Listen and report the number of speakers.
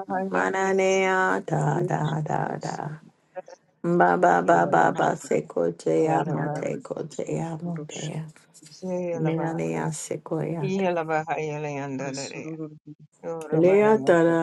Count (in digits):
2